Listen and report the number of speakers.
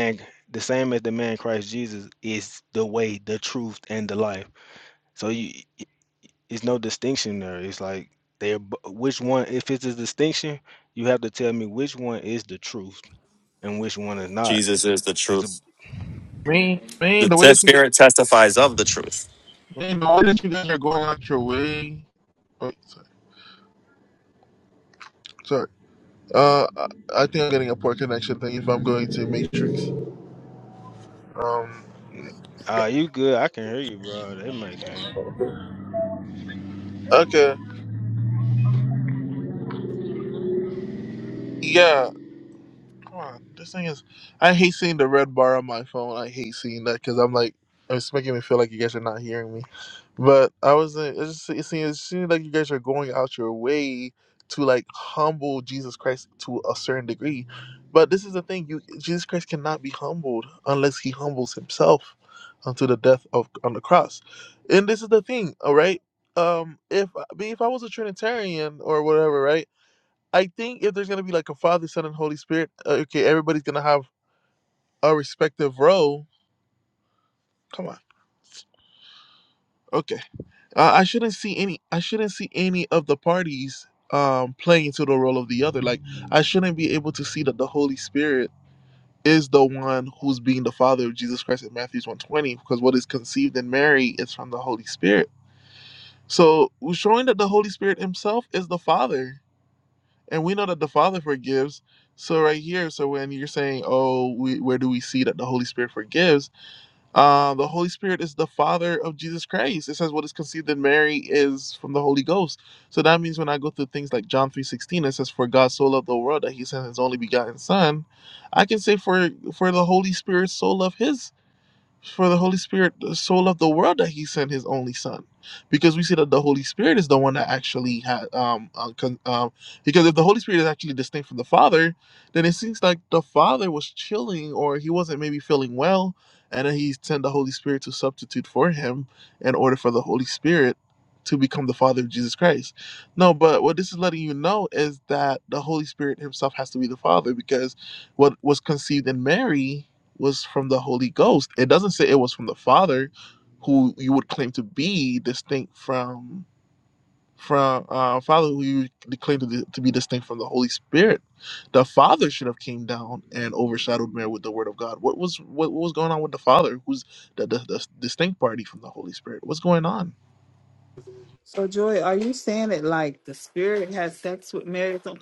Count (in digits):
4